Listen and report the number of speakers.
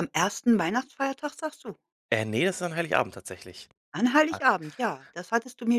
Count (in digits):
2